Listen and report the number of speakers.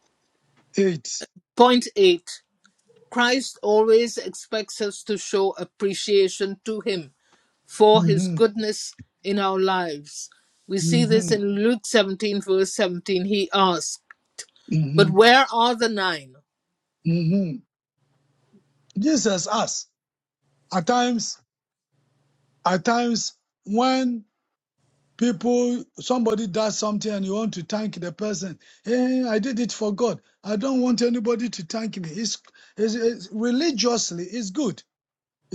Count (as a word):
two